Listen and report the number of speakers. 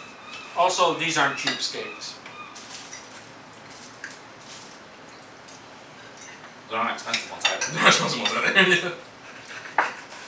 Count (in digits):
3